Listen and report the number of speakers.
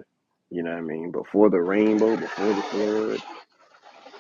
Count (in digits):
1